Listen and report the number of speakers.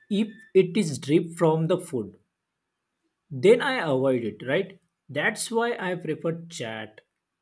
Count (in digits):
1